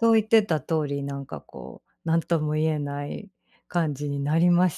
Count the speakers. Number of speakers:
one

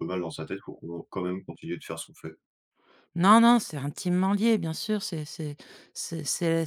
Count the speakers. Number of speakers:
two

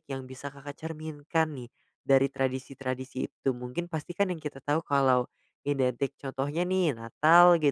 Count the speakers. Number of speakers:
one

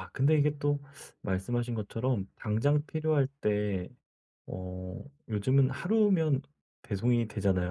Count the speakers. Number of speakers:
one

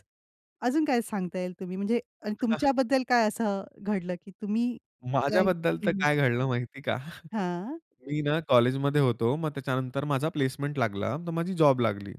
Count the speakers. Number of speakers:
two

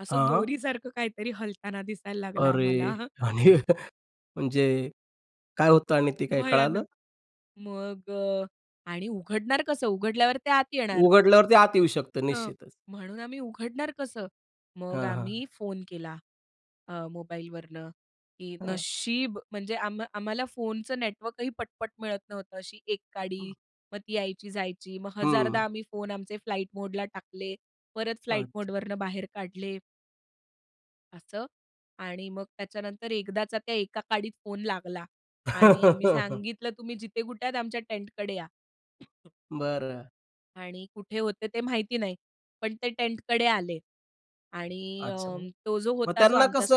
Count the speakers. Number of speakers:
two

